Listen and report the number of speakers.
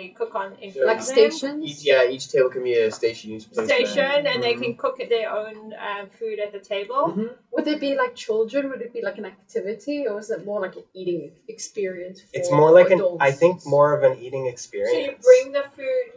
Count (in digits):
4